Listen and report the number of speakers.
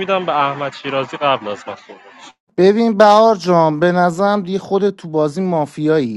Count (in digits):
2